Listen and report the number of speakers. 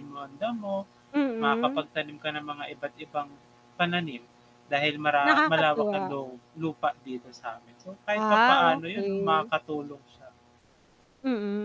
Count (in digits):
2